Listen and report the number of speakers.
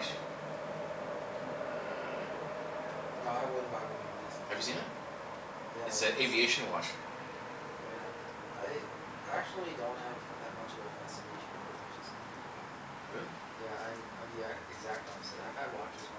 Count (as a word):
two